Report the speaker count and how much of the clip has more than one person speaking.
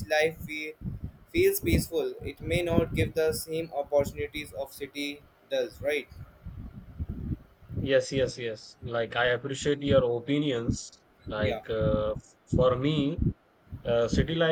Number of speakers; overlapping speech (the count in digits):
2, about 2%